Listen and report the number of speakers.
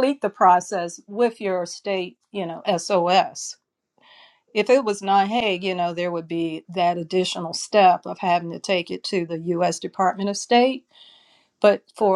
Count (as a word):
one